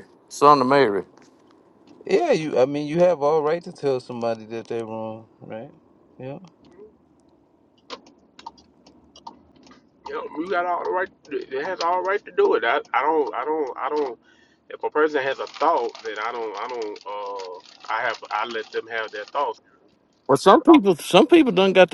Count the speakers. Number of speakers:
three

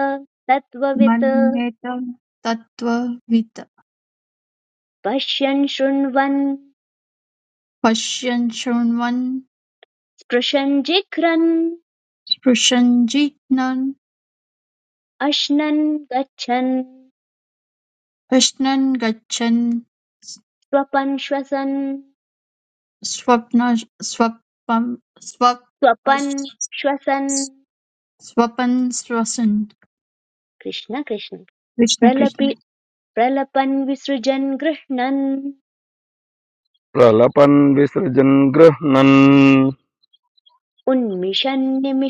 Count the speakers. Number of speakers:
three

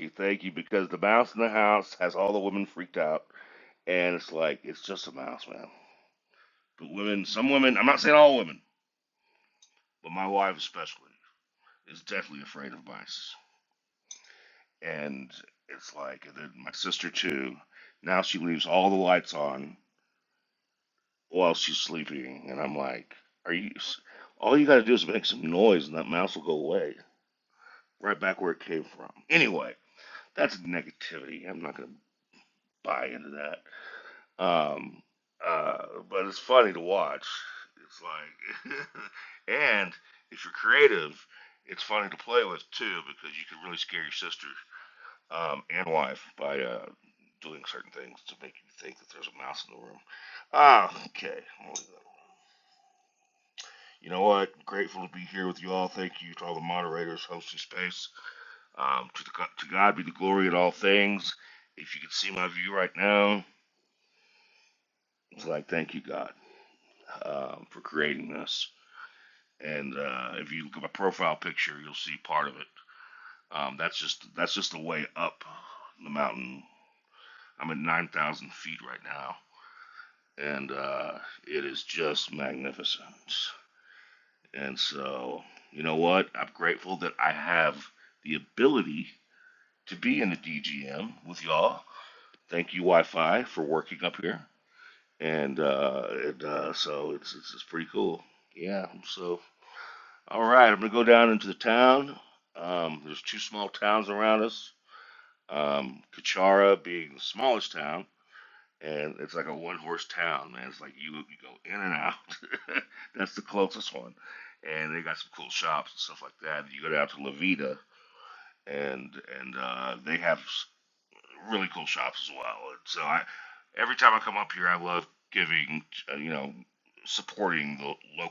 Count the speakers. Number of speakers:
one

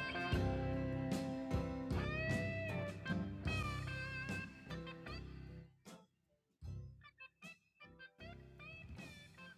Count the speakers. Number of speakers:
zero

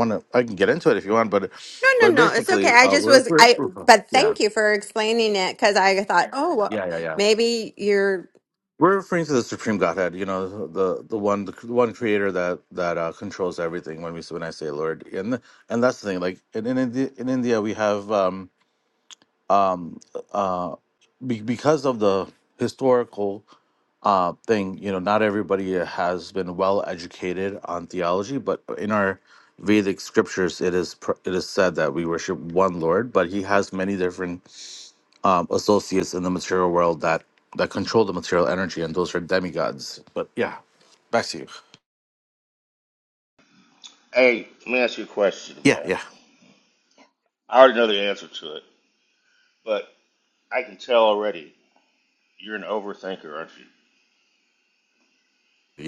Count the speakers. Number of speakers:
three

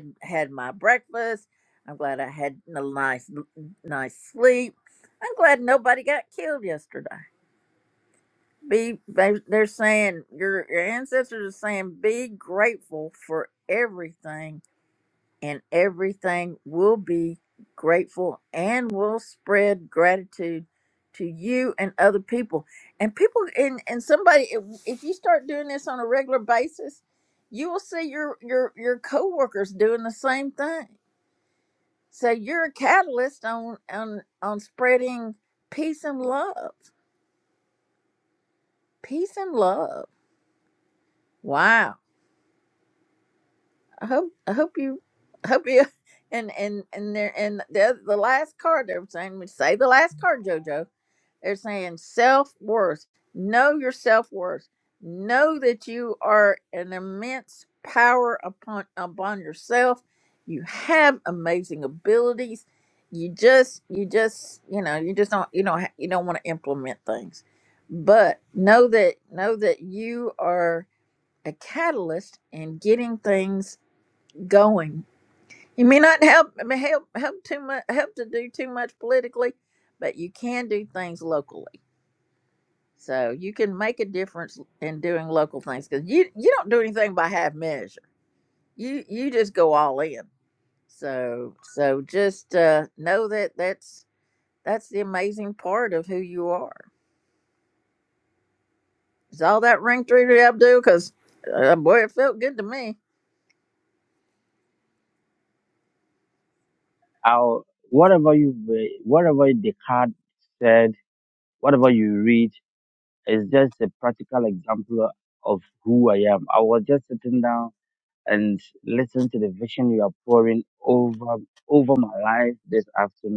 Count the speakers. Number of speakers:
two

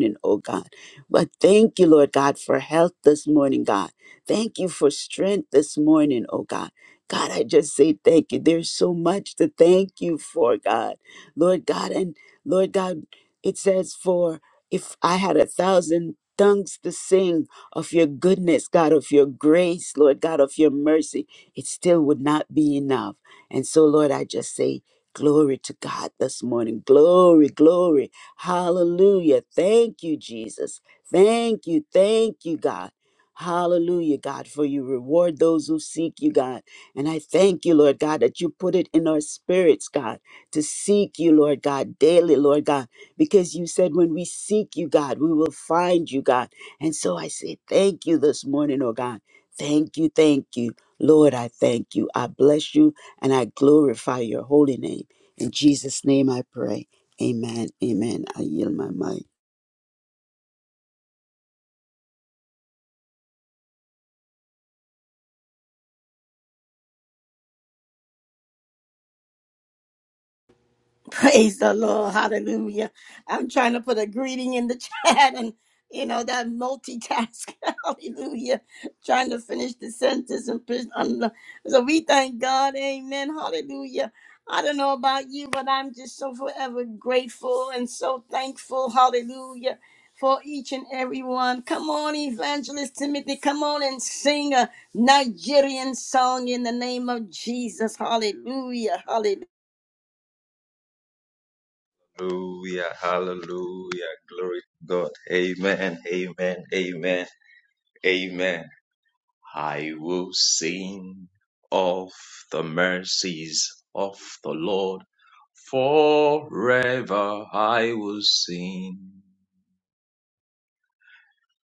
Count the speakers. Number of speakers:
three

